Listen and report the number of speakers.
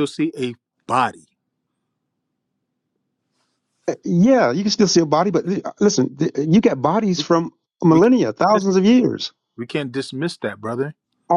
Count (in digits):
2